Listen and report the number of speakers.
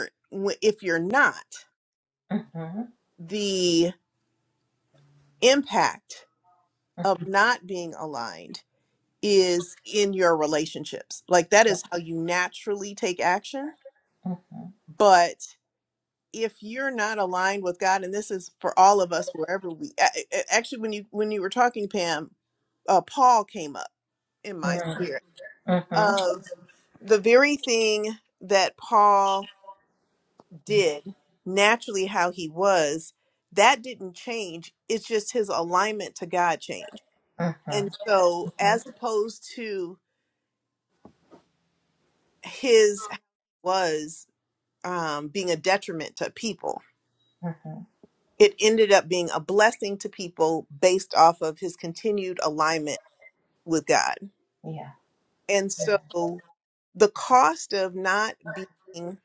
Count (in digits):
2